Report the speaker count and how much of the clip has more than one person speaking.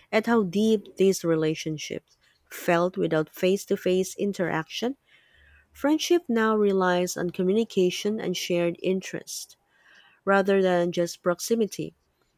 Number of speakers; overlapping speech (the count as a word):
one, no overlap